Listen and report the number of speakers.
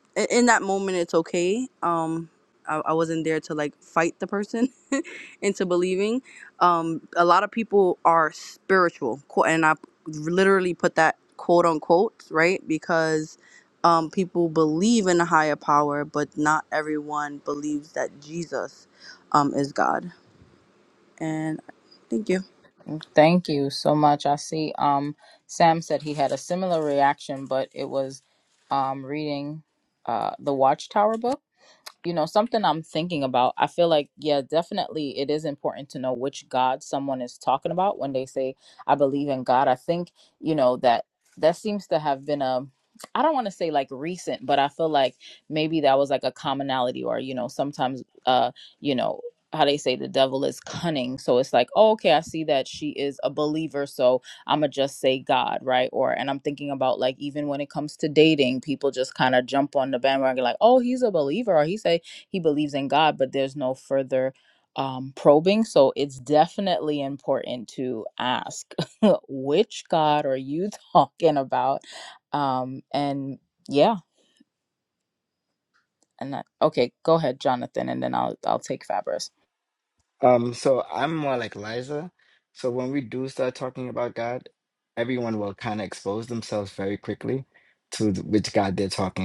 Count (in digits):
3